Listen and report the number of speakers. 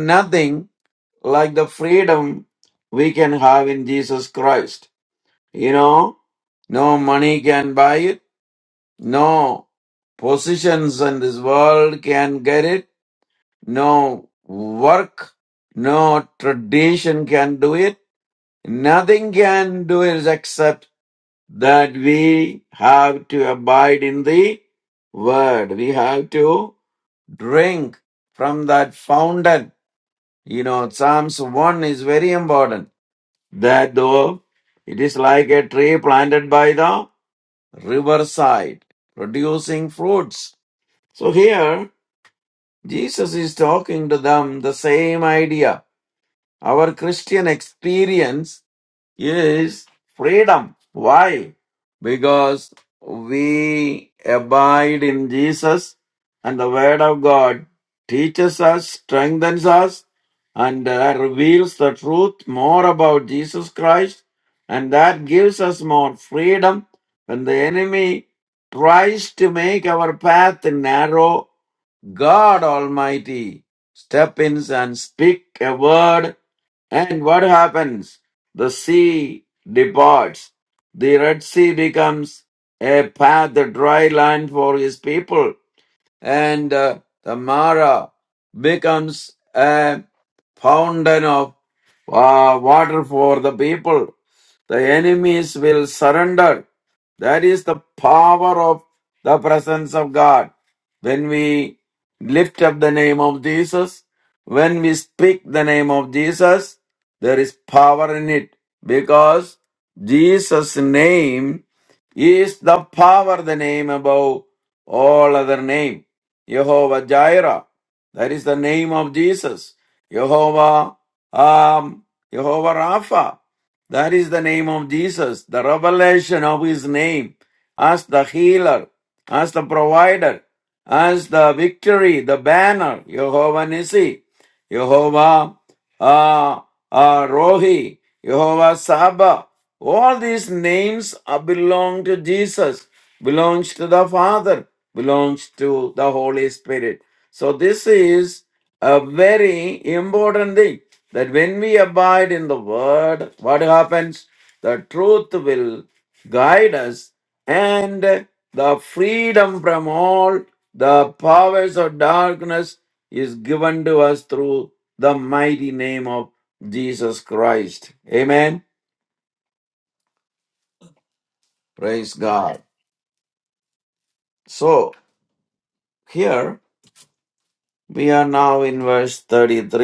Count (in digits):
1